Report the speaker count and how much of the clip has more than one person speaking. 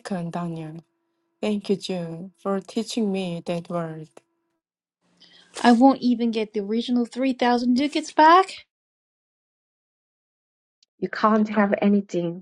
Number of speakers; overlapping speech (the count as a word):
three, no overlap